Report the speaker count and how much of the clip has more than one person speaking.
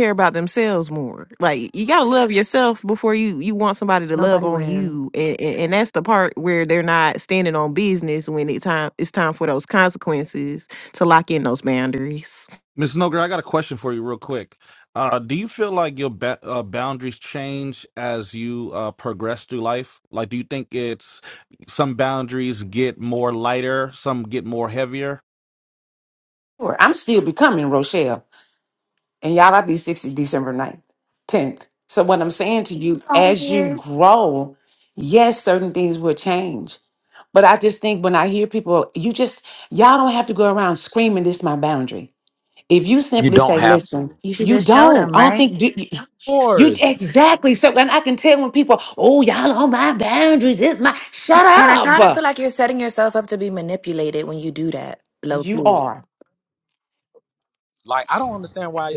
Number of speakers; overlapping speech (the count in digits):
5, about 7%